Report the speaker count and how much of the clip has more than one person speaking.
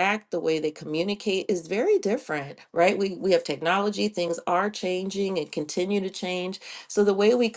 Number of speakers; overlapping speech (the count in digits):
1, no overlap